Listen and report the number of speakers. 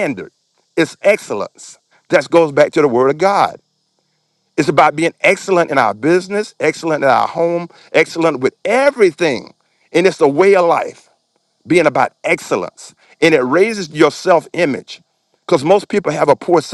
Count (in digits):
1